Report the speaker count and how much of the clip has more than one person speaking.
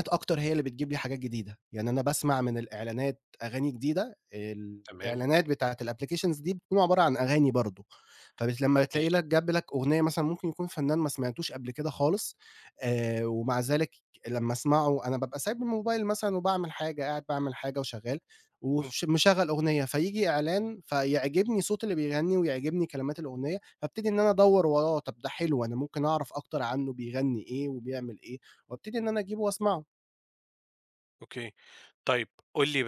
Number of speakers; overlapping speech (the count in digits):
2, about 2%